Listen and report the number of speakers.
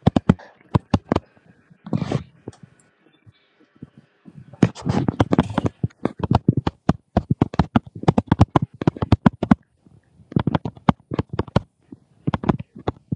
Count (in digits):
0